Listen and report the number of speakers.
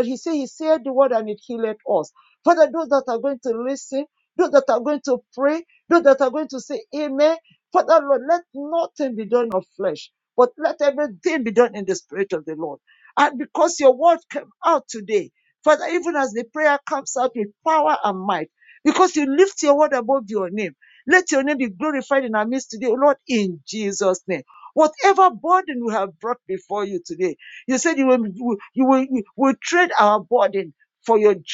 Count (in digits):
1